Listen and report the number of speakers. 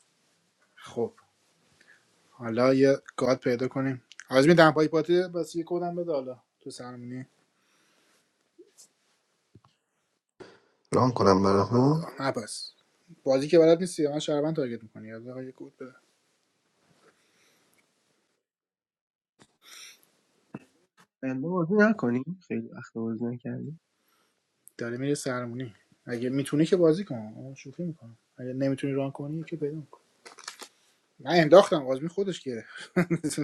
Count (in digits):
3